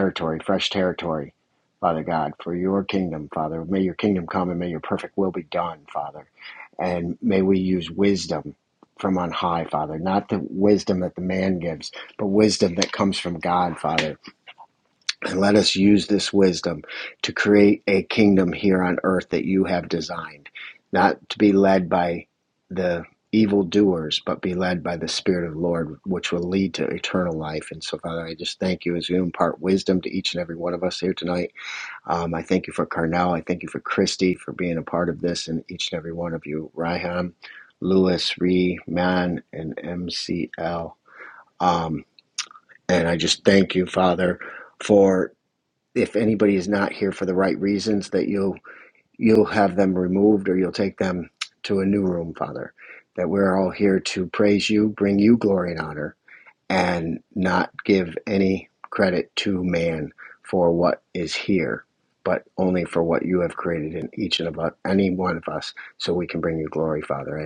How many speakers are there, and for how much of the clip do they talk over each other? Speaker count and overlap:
1, no overlap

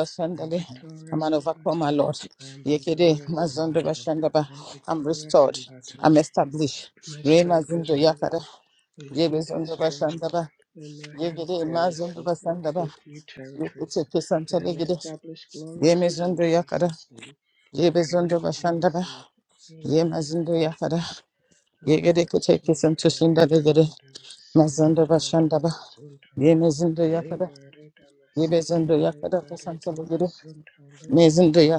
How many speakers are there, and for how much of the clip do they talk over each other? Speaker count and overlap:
2, about 57%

